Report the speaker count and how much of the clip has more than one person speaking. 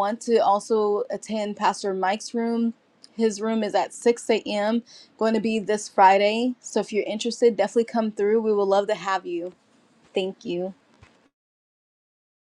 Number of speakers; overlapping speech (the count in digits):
1, no overlap